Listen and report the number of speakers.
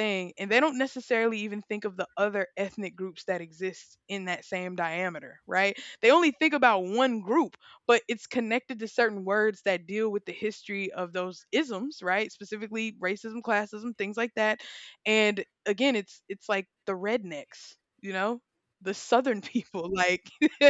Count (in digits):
1